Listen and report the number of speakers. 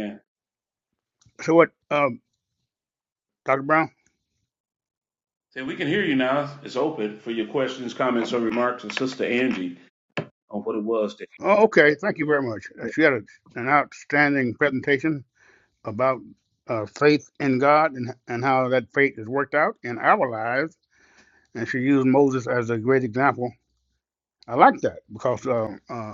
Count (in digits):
2